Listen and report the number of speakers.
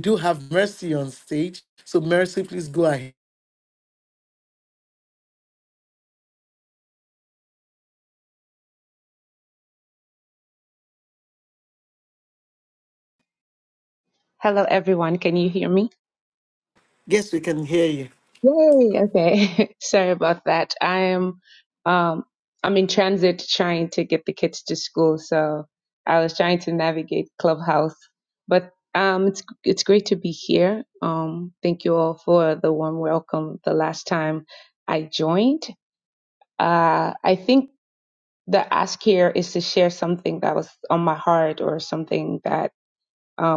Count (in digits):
2